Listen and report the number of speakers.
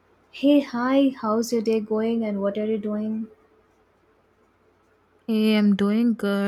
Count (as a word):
two